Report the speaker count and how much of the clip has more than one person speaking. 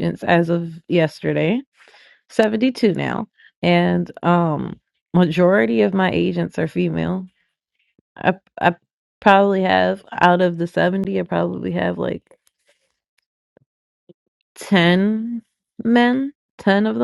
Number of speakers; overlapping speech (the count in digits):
1, no overlap